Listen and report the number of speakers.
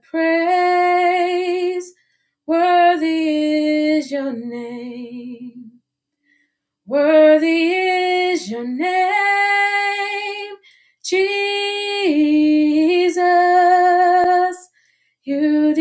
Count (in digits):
1